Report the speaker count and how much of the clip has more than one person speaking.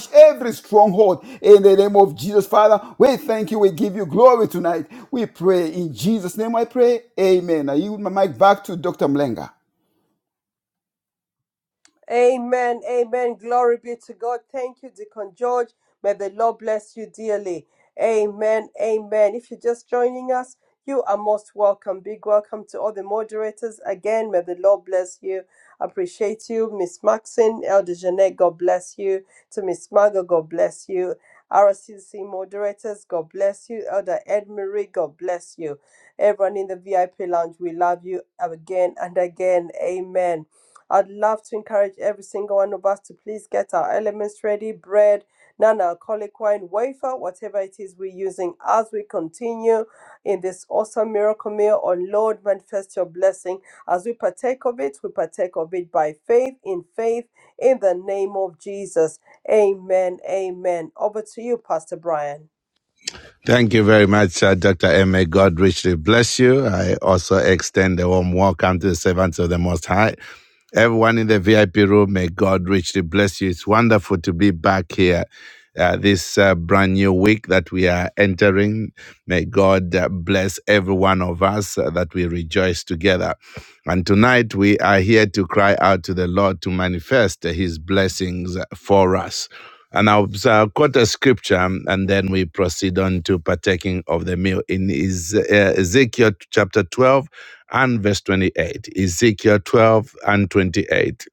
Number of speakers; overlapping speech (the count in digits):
3, no overlap